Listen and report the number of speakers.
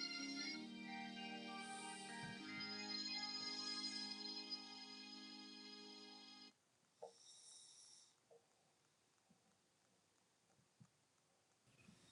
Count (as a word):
zero